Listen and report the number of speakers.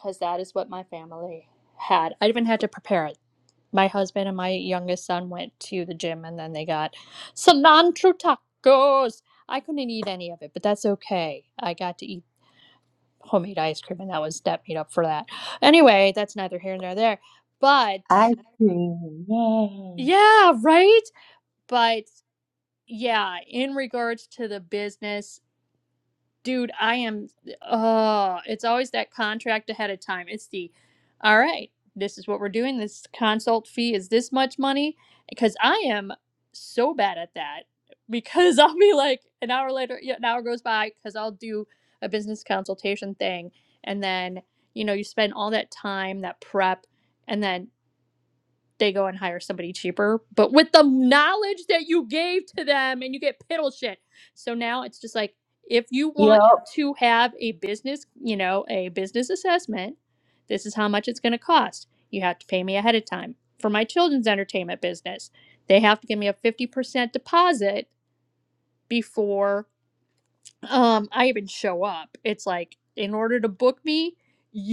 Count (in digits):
2